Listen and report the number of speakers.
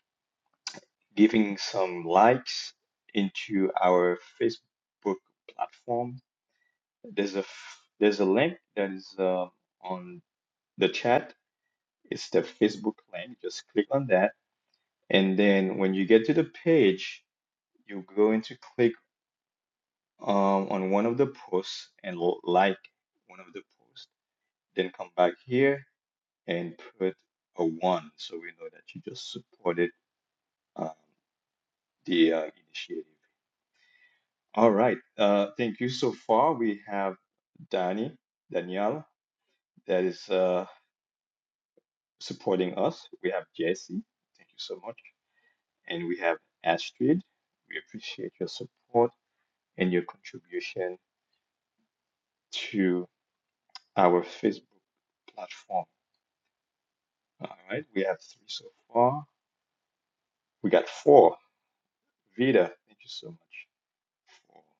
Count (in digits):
1